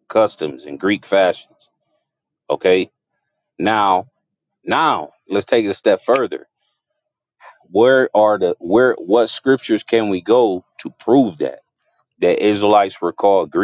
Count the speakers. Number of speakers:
1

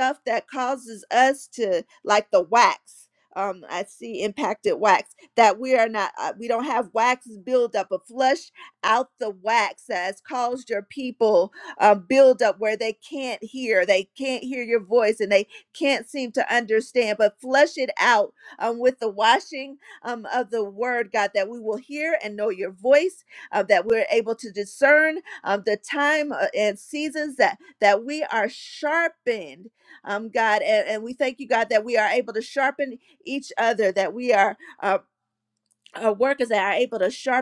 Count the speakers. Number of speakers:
1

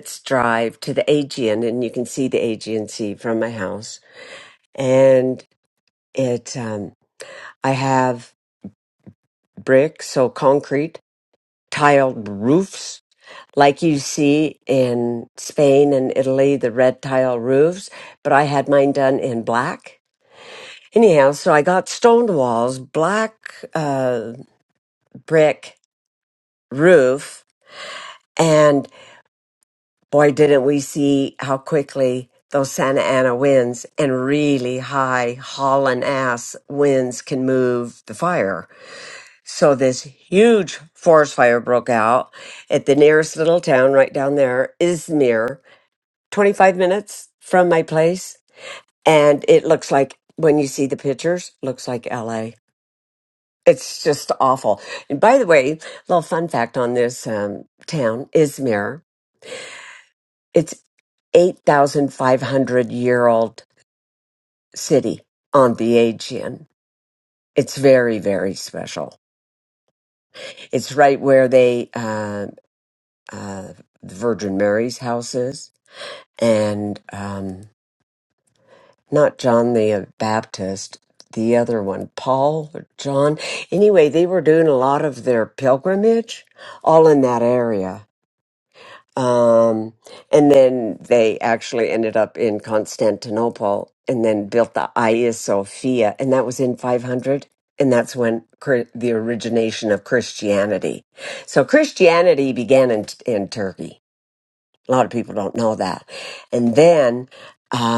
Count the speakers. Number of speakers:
1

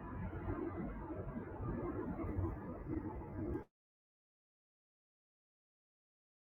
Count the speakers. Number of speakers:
0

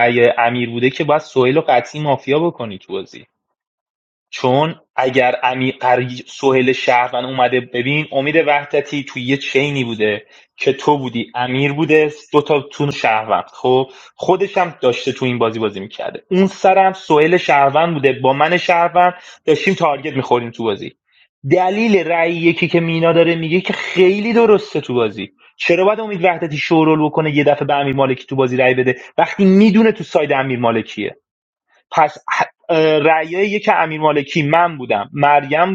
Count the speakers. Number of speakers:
1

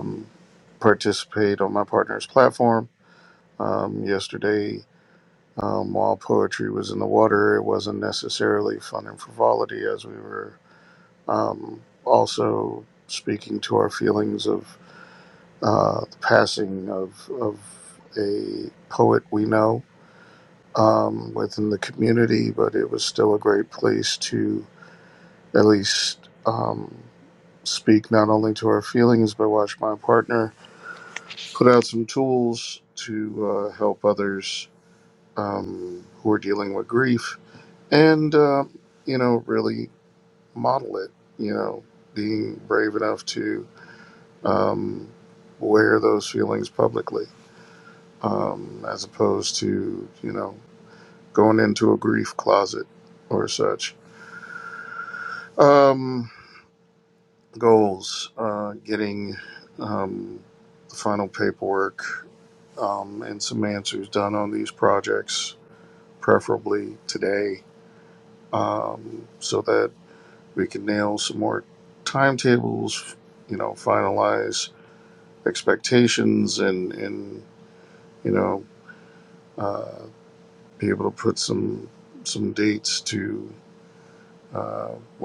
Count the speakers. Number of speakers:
1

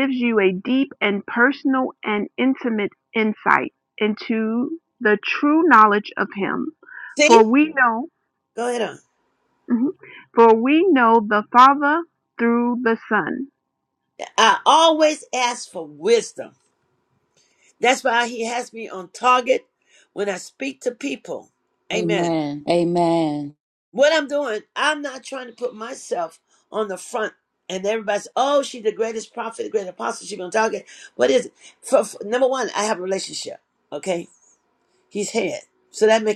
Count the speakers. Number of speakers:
3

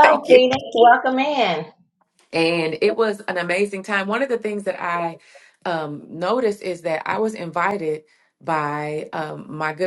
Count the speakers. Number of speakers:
2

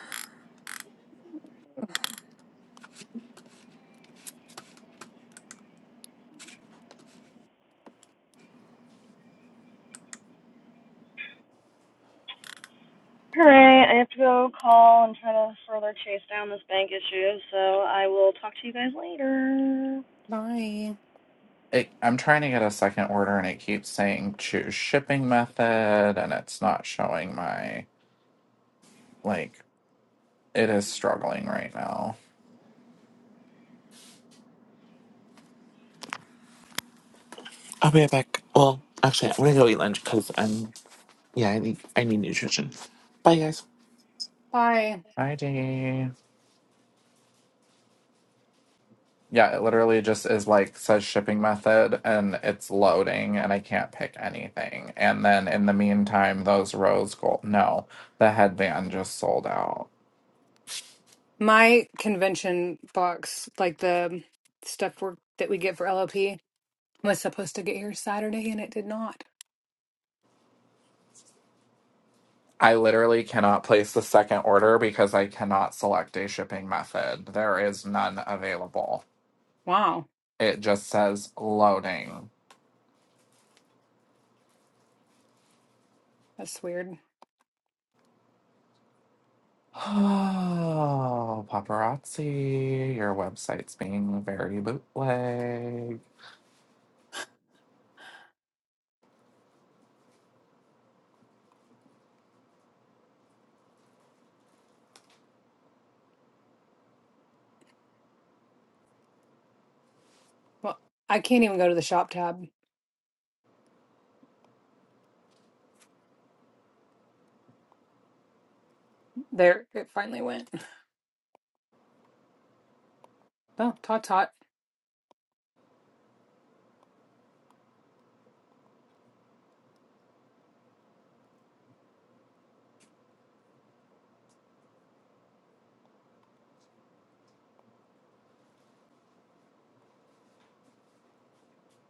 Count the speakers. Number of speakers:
4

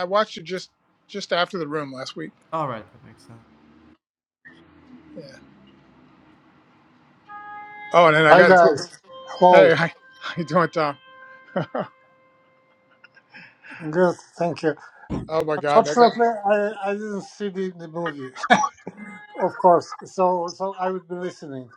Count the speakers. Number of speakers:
3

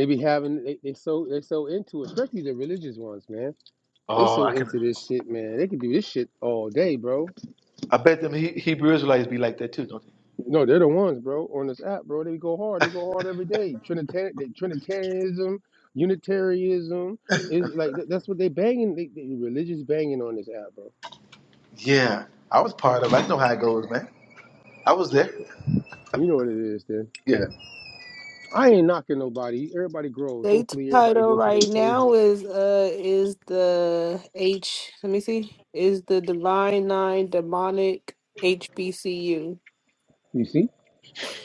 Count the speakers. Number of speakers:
3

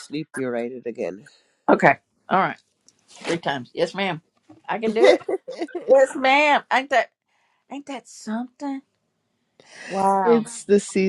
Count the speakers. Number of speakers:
2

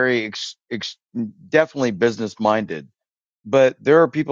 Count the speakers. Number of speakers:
1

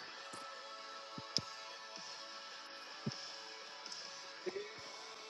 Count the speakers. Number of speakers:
0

